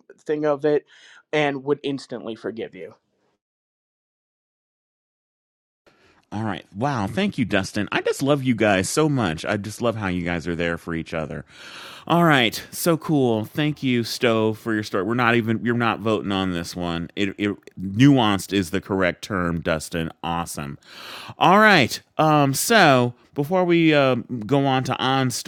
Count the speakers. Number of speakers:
2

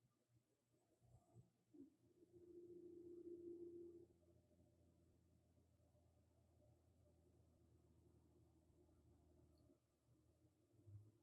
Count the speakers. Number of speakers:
0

